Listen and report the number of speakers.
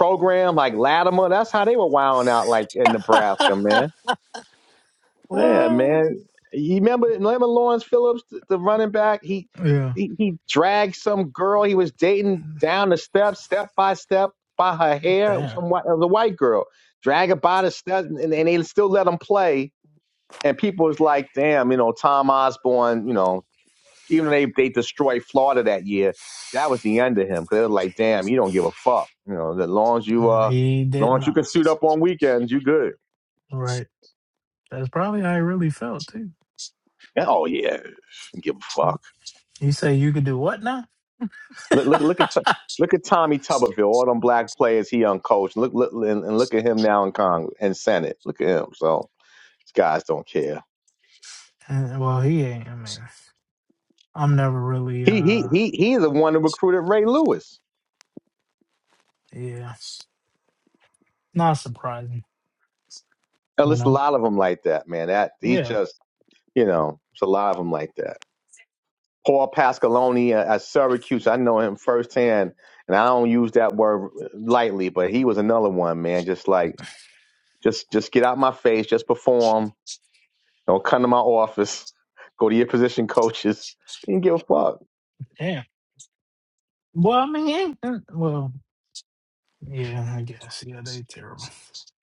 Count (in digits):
2